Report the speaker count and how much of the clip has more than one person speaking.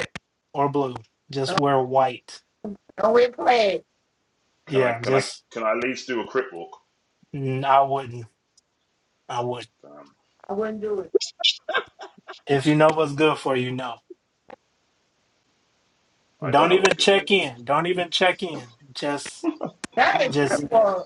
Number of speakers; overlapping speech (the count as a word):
three, about 8%